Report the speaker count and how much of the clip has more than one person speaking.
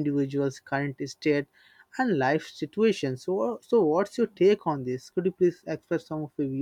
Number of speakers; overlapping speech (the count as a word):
one, no overlap